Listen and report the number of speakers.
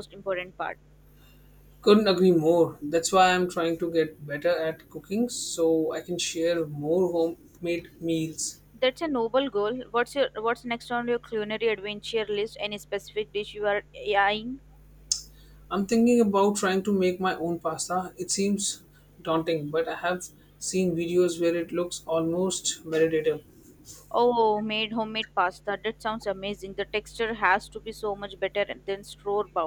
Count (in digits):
2